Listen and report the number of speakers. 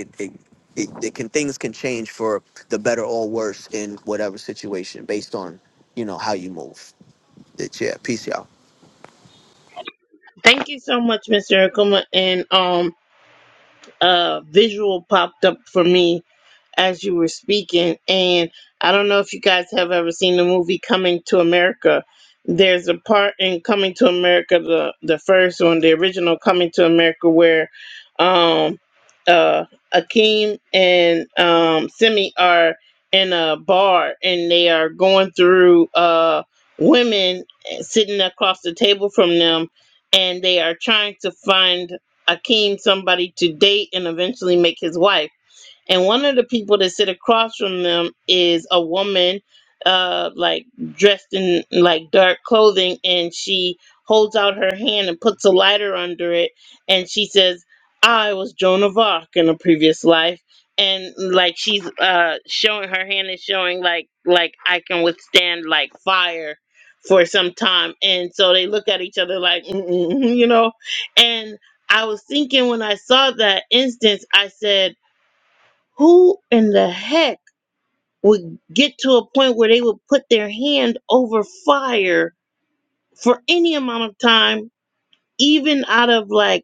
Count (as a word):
two